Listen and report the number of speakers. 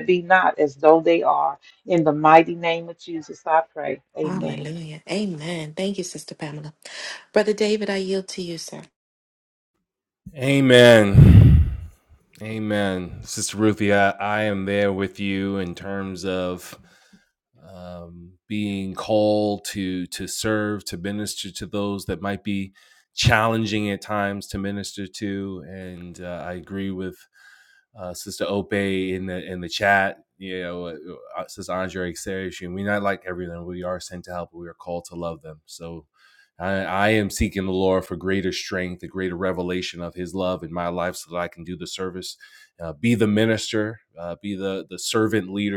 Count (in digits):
3